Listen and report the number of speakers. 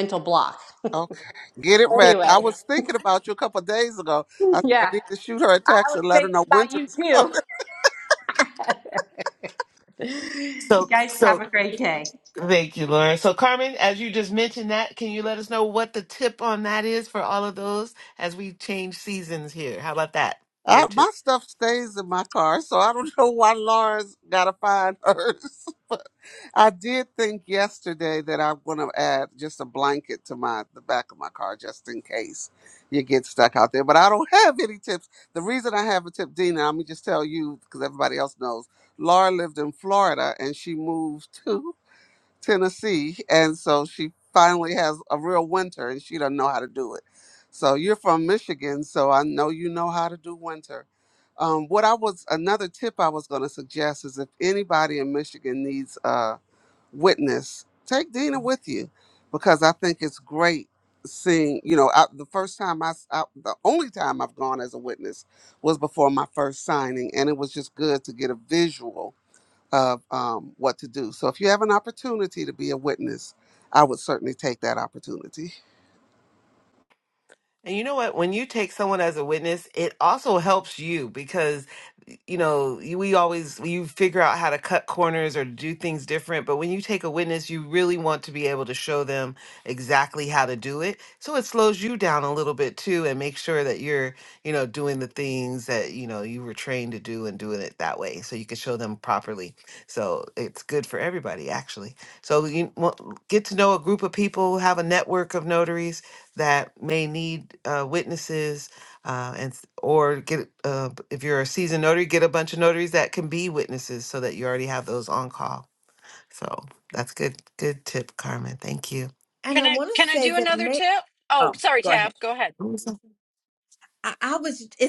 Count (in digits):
5